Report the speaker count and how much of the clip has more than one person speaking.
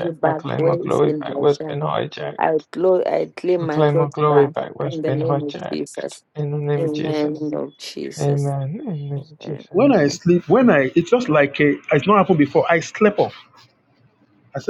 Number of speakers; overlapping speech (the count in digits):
3, about 36%